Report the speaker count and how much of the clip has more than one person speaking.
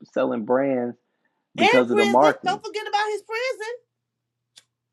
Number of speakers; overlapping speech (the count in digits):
2, about 20%